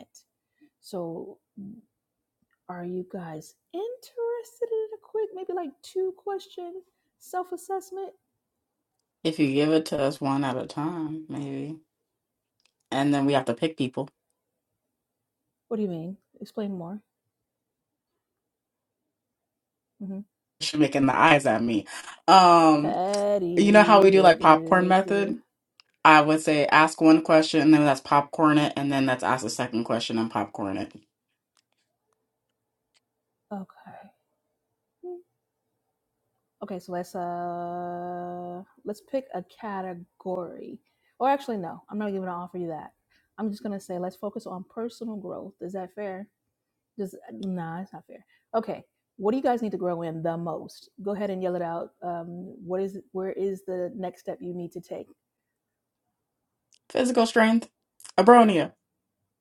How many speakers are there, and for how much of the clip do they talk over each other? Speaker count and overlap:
2, about 1%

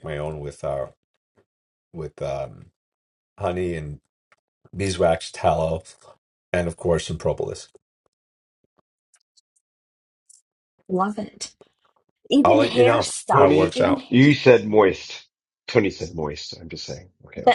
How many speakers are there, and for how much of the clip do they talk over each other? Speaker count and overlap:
3, about 10%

